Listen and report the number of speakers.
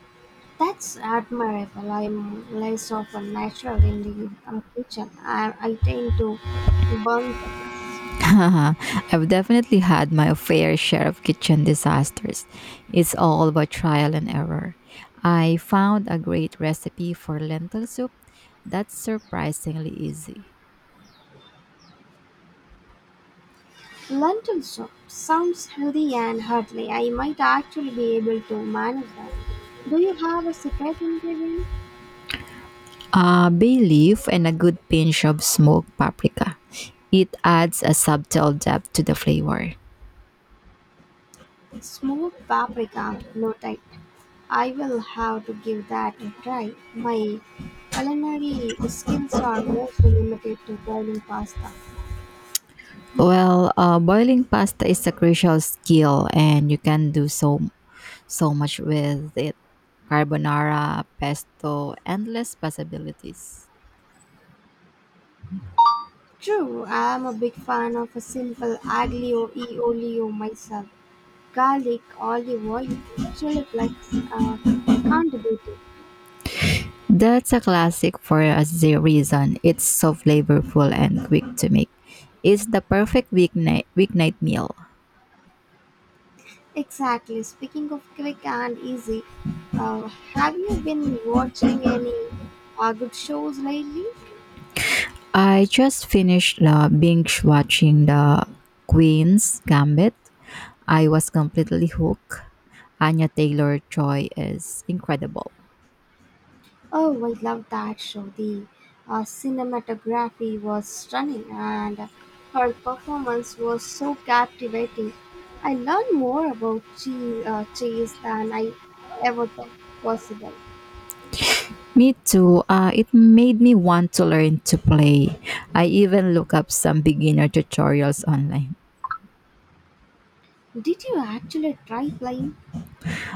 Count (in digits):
2